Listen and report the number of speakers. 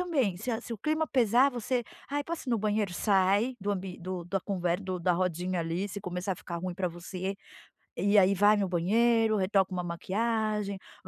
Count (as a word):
one